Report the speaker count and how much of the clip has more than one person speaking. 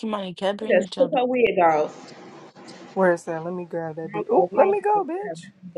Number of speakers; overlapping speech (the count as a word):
three, about 25%